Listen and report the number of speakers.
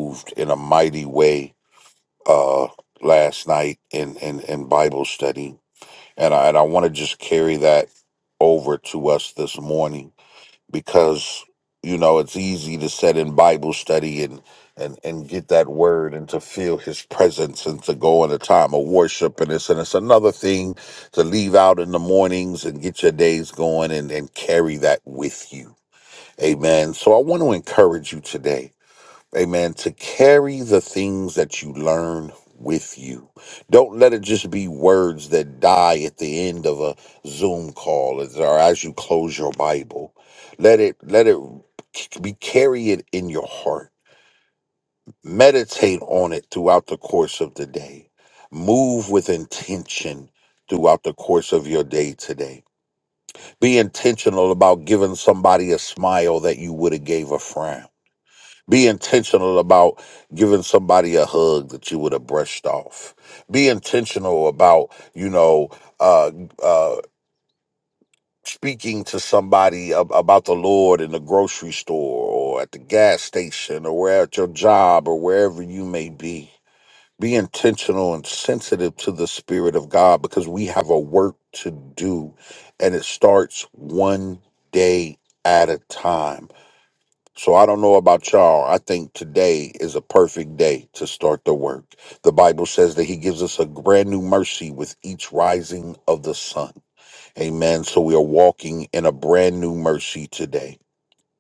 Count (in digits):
1